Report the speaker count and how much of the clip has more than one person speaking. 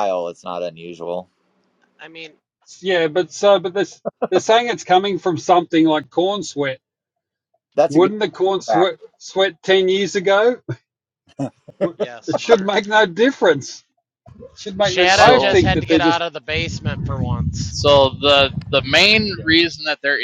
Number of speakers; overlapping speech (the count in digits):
4, about 12%